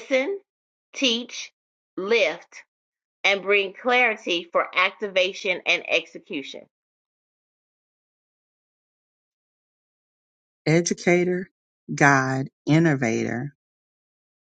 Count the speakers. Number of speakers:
two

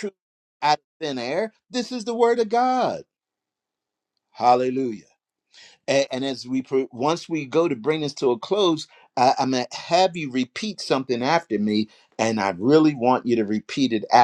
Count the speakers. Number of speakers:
one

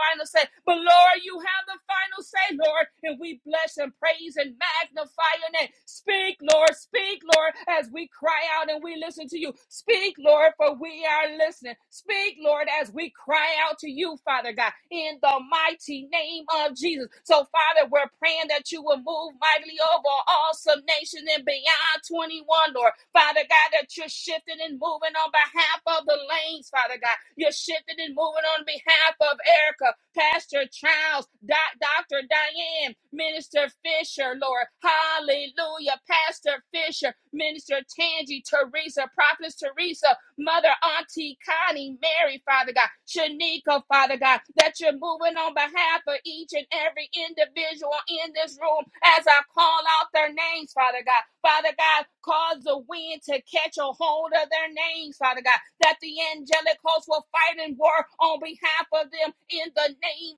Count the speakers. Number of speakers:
one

